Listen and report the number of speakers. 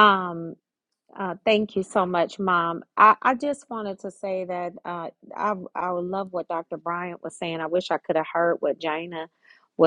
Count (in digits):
1